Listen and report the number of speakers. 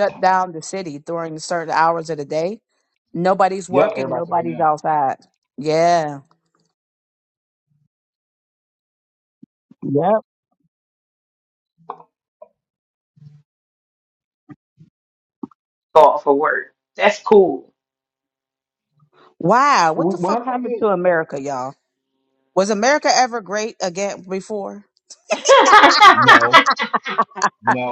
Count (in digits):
3